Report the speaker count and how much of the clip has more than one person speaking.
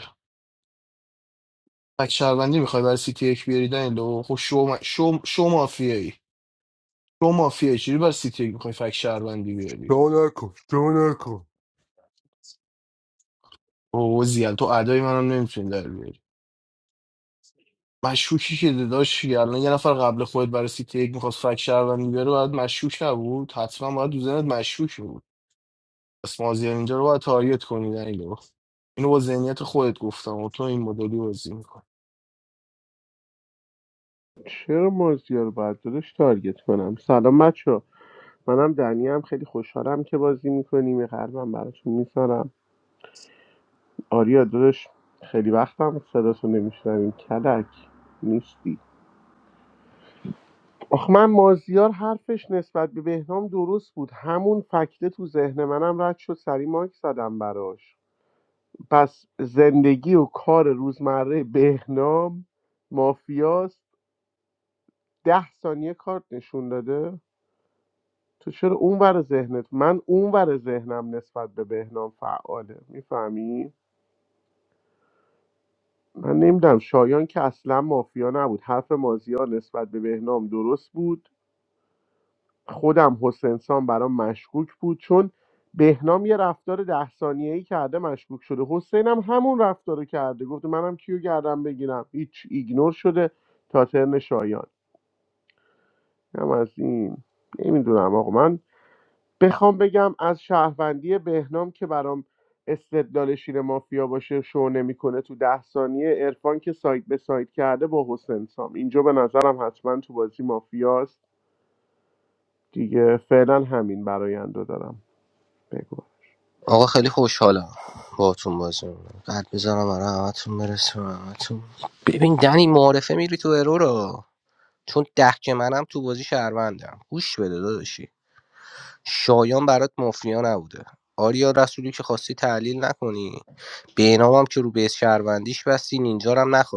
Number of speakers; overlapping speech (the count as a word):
four, under 1%